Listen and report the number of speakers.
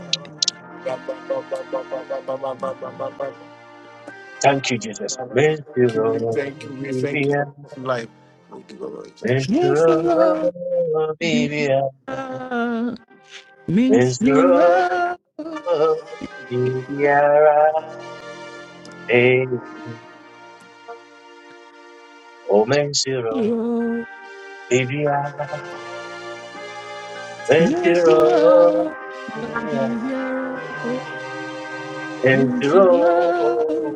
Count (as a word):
three